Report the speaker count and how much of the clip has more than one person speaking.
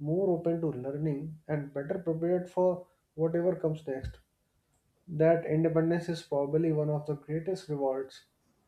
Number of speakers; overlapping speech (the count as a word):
one, no overlap